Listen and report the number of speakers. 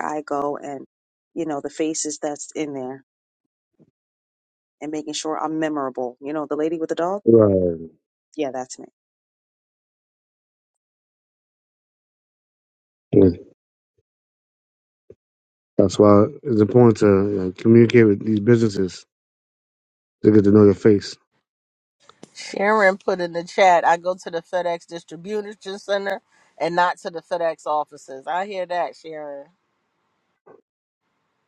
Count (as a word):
three